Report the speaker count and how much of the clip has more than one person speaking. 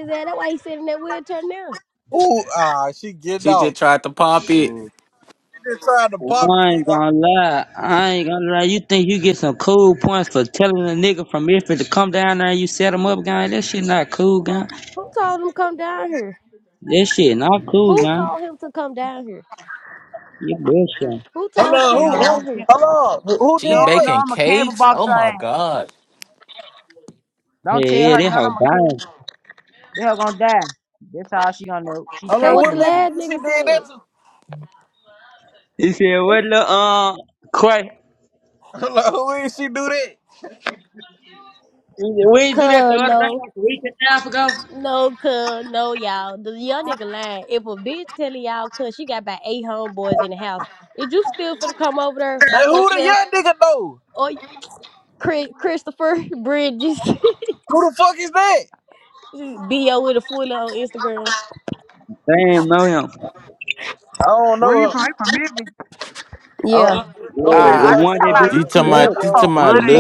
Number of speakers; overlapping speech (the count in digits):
5, about 17%